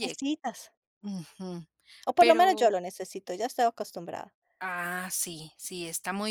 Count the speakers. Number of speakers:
2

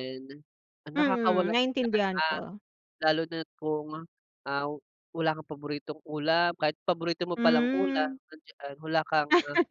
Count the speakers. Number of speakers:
2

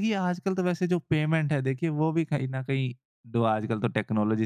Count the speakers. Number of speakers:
1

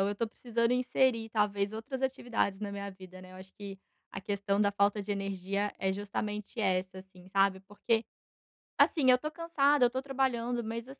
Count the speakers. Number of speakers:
1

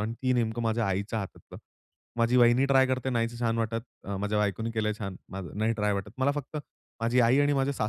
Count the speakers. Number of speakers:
1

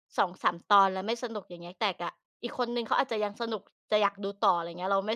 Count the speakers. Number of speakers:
1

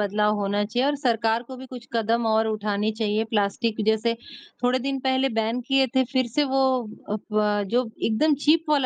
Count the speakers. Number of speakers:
1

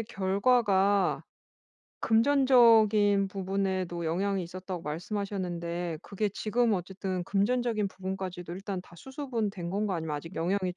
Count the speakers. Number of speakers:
1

